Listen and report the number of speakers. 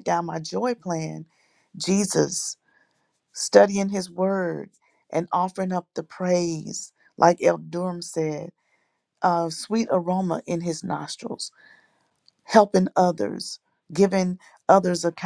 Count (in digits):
1